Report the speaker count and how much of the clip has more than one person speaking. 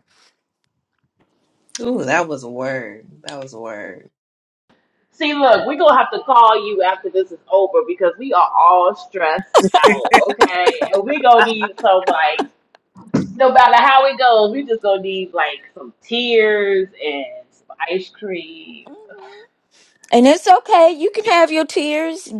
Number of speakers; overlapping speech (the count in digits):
3, no overlap